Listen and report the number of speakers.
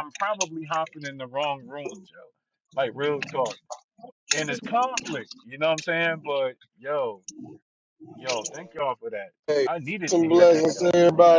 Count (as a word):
two